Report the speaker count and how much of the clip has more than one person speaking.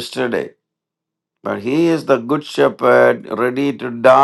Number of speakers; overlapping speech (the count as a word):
one, no overlap